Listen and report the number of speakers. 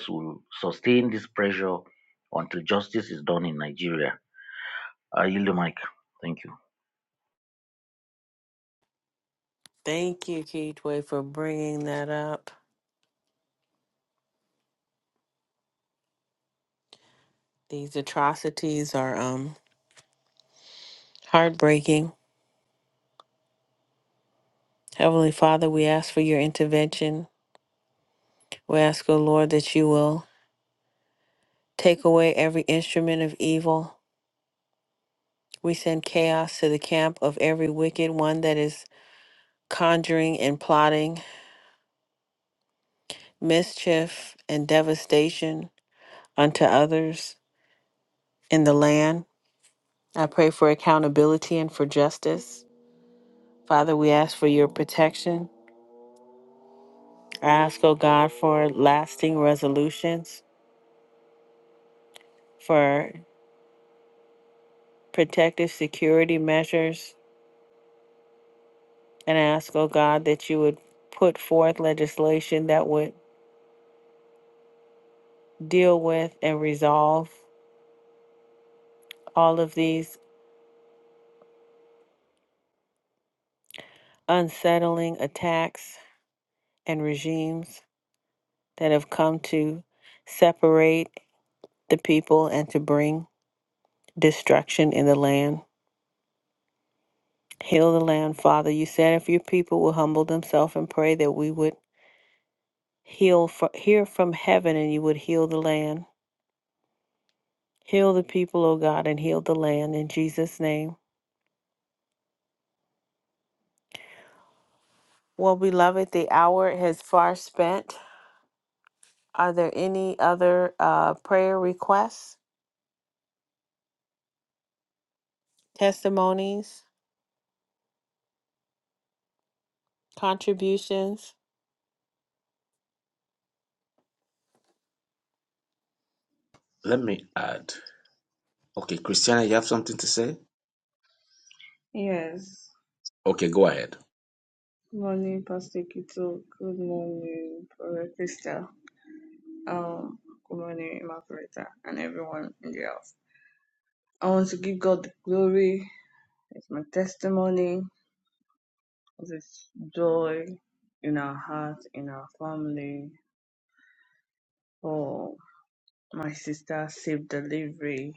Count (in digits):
4